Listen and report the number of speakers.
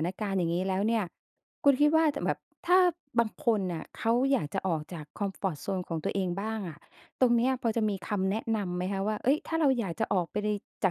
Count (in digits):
1